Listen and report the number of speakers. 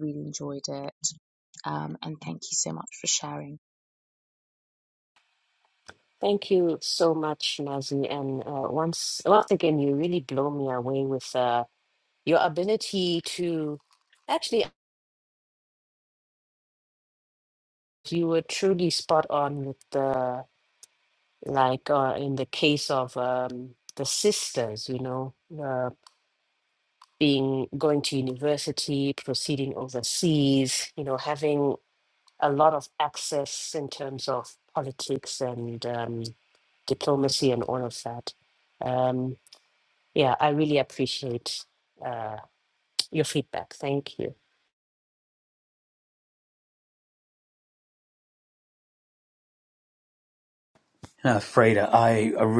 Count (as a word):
three